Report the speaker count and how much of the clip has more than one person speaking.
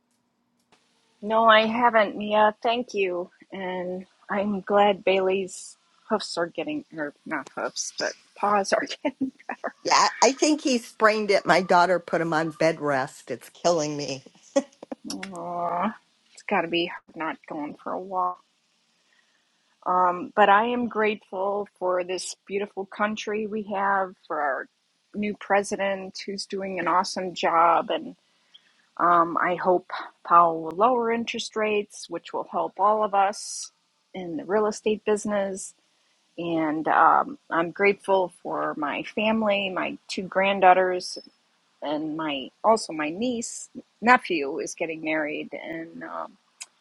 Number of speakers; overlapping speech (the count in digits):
2, no overlap